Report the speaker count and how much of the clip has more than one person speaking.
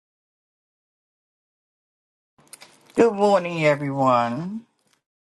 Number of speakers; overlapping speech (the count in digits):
1, no overlap